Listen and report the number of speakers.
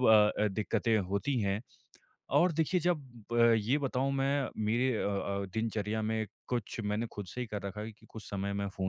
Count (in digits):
1